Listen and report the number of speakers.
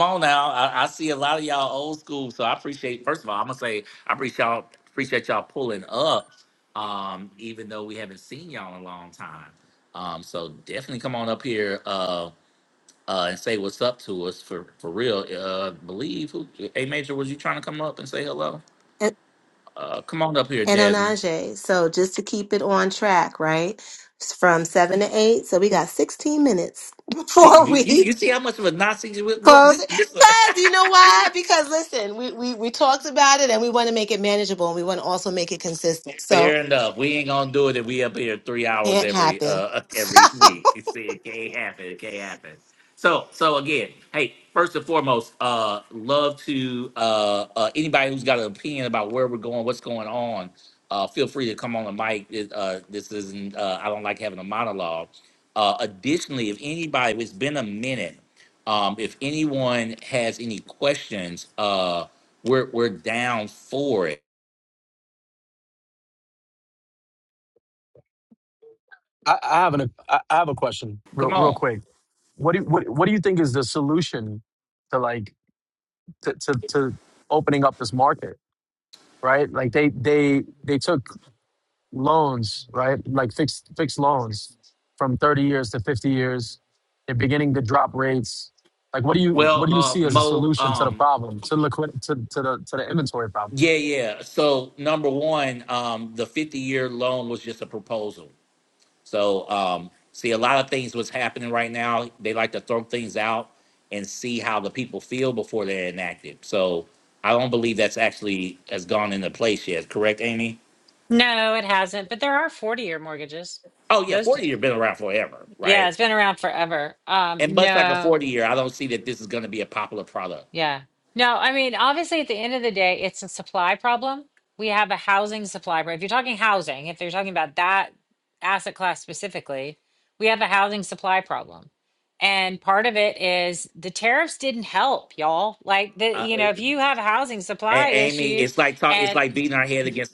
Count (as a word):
four